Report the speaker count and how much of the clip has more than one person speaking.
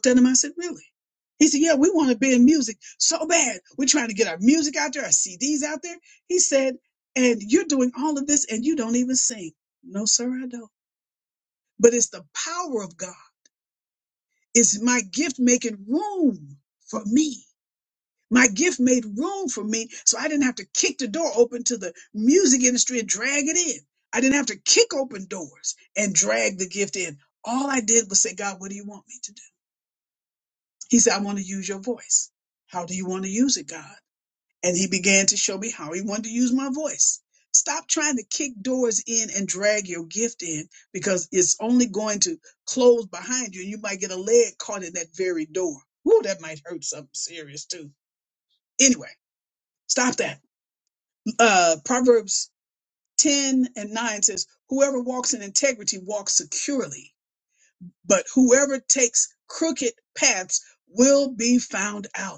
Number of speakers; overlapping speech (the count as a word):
one, no overlap